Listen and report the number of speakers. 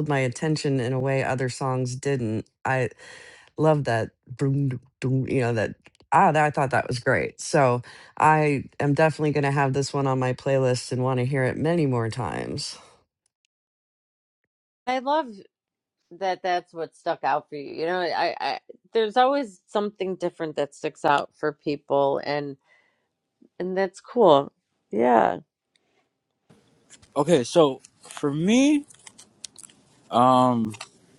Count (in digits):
3